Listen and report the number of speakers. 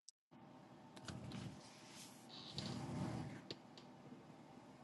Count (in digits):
0